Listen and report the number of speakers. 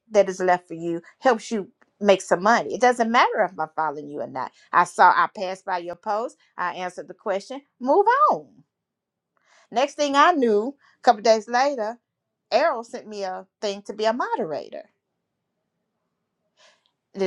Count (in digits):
1